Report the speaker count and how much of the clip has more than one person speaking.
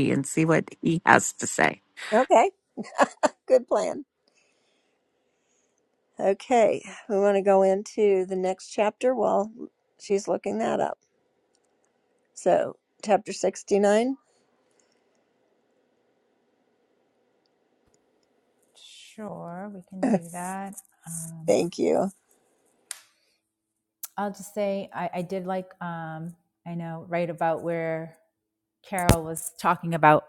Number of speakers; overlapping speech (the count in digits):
3, no overlap